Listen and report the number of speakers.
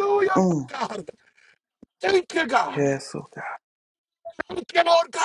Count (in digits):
2